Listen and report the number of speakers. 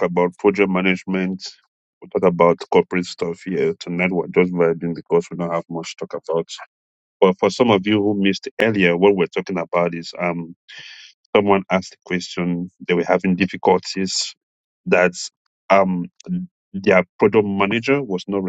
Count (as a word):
one